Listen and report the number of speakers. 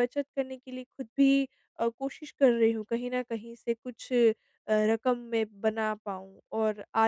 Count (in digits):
1